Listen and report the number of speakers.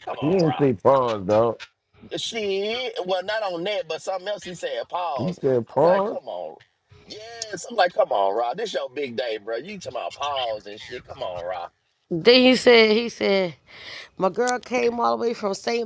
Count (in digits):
3